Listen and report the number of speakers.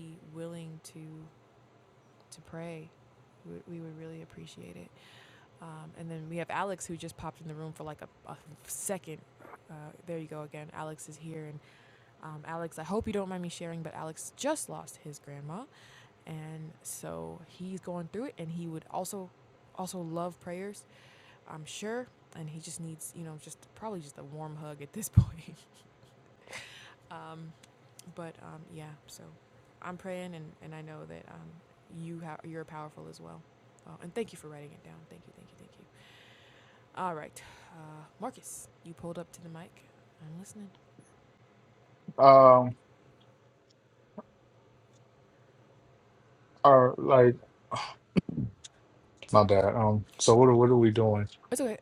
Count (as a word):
two